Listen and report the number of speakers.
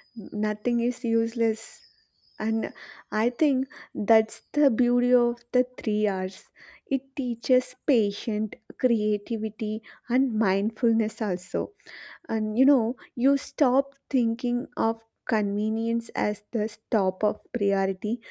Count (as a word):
one